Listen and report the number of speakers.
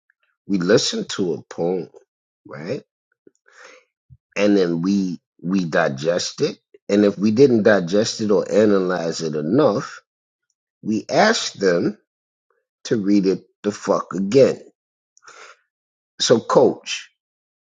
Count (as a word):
one